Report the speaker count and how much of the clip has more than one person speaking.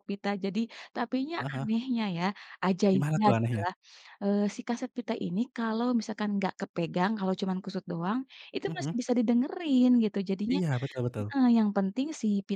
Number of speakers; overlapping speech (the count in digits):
2, about 11%